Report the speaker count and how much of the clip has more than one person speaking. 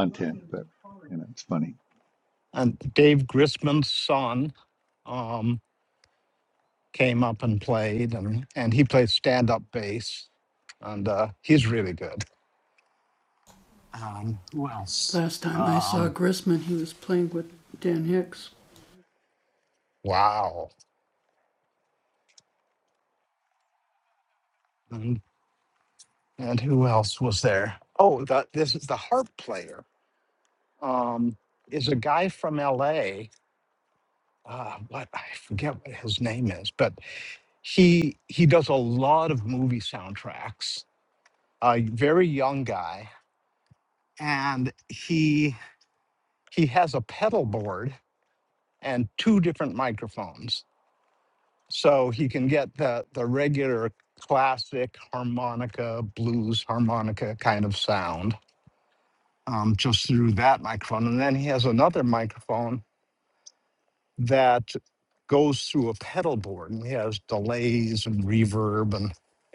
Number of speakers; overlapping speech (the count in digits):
3, about 1%